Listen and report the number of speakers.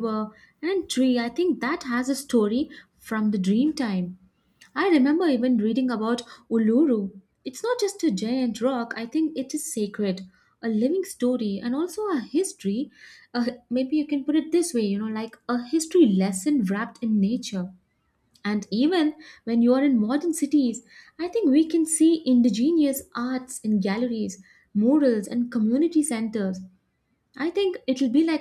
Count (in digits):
1